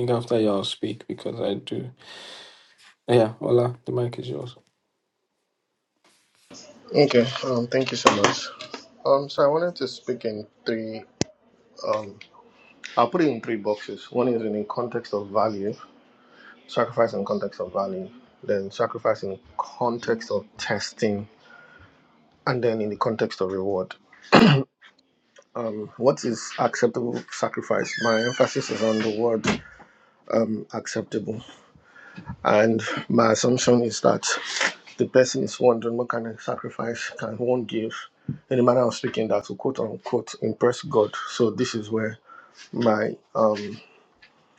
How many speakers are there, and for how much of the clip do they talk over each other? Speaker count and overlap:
2, no overlap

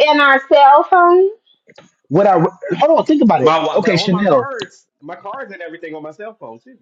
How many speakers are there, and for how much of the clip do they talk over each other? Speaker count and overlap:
3, about 15%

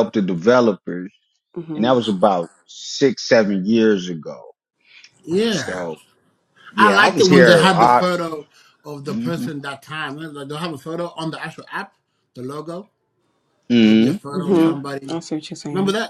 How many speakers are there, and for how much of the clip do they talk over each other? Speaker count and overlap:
3, about 23%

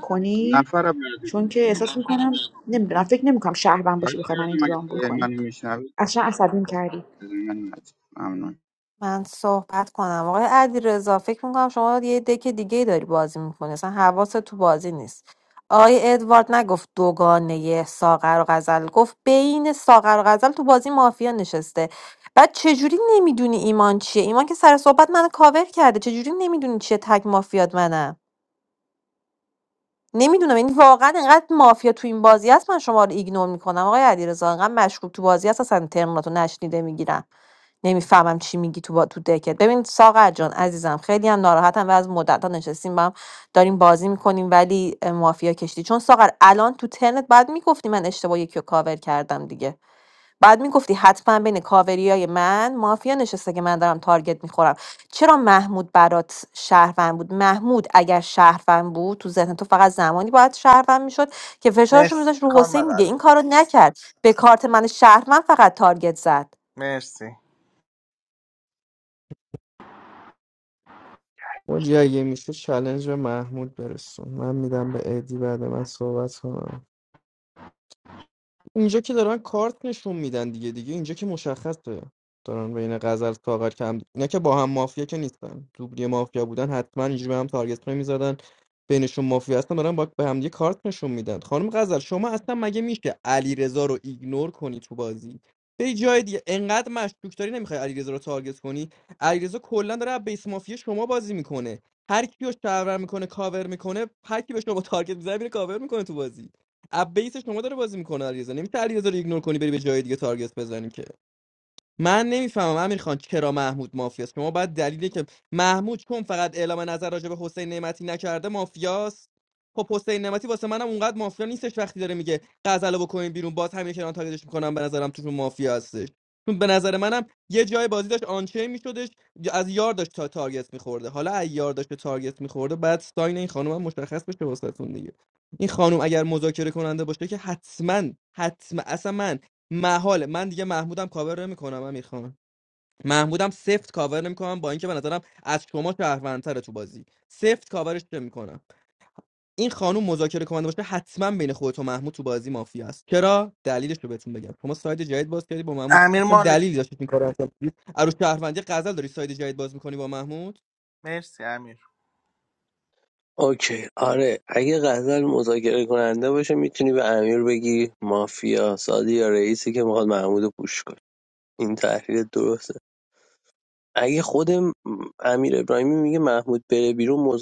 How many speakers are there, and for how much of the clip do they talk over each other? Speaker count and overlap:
6, about 2%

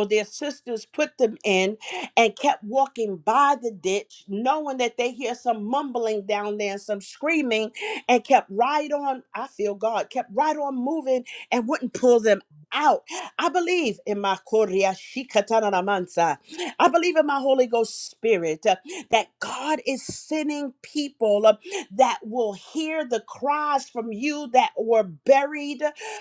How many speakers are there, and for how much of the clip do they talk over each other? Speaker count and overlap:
1, no overlap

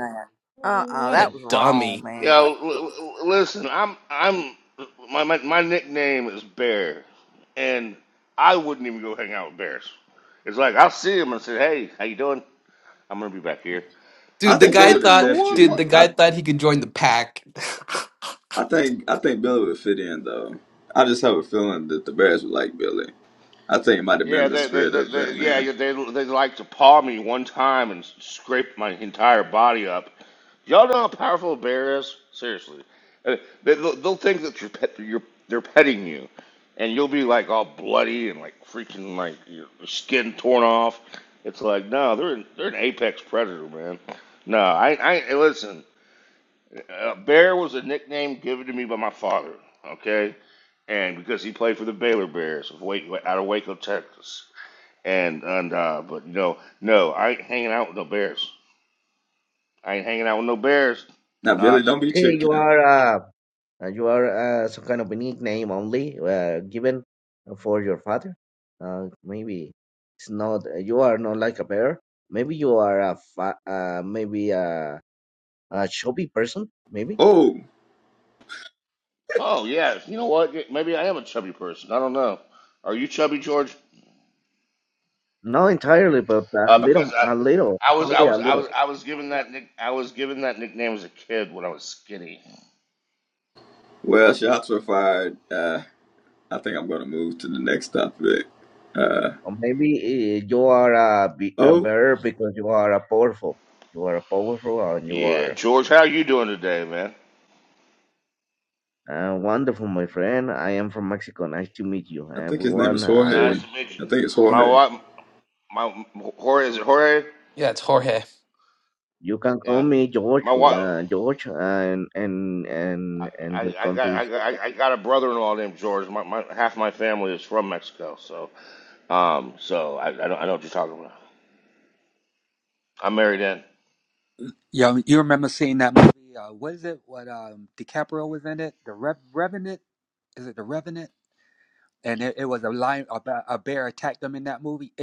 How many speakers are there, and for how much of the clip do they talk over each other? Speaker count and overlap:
6, about 8%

